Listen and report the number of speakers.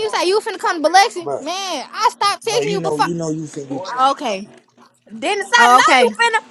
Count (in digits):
3